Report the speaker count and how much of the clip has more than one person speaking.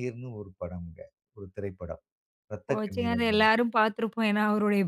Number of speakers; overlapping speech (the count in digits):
2, about 2%